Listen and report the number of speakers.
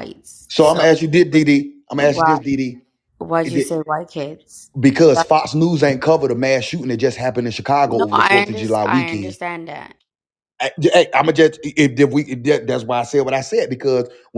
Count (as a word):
two